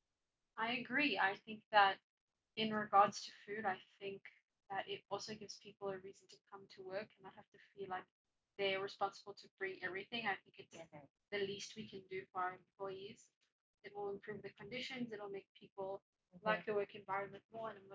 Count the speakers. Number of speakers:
1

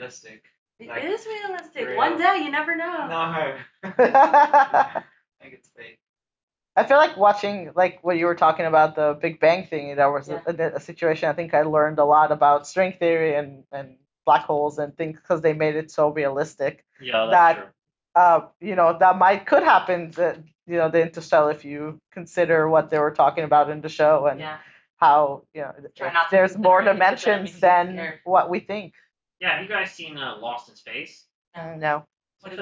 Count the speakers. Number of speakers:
4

